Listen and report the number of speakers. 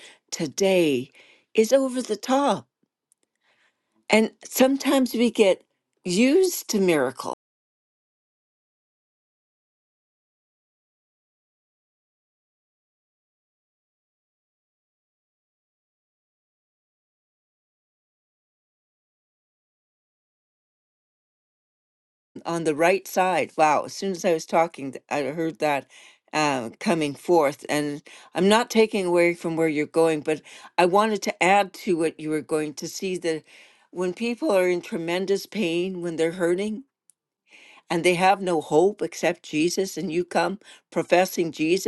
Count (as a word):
one